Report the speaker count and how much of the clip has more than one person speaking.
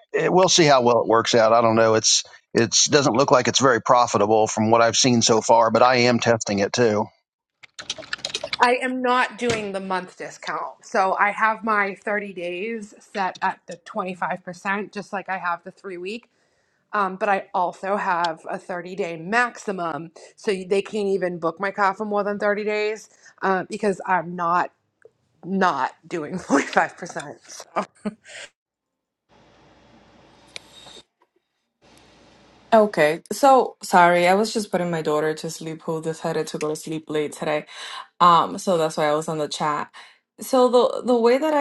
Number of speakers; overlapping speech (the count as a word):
three, no overlap